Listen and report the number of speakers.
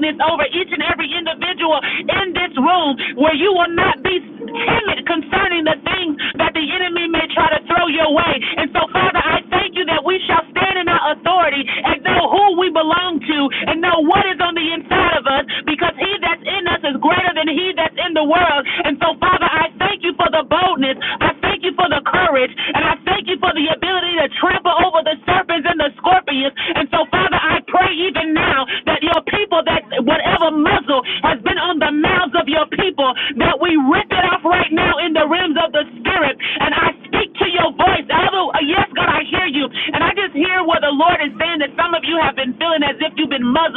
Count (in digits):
1